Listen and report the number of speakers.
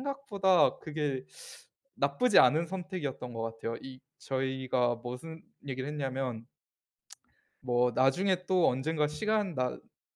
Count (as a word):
one